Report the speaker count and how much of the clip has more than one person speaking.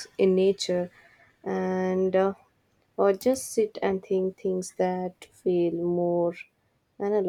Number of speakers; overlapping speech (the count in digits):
1, no overlap